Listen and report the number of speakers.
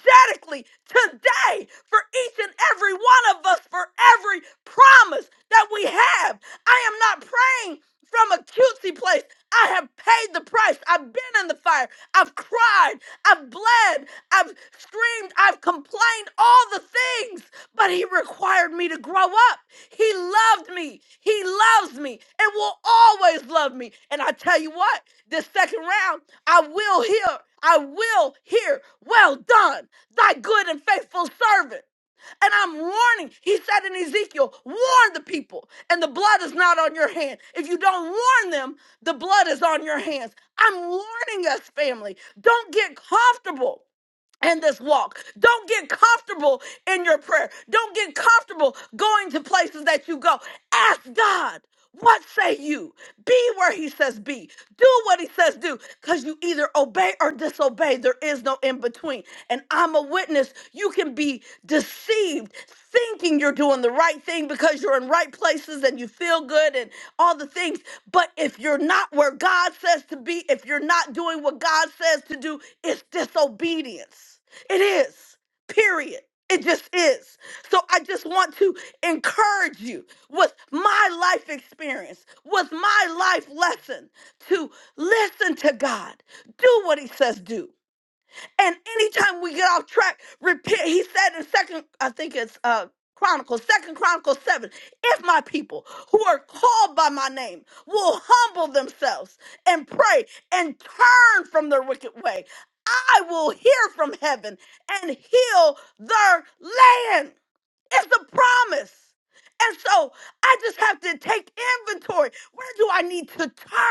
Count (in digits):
1